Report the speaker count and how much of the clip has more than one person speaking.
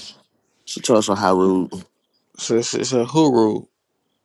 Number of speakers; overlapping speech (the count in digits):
2, no overlap